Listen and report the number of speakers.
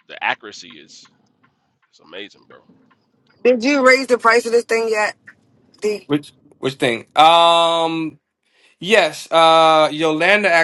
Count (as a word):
three